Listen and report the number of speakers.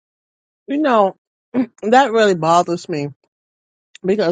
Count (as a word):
one